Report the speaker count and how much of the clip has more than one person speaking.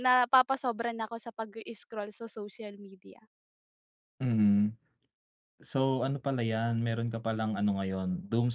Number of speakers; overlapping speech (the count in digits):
2, no overlap